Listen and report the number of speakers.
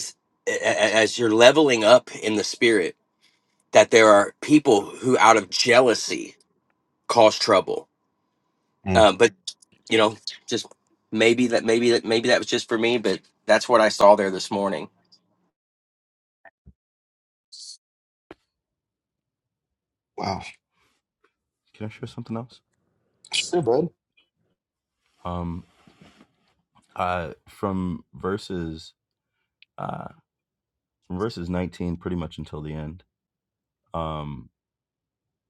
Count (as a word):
three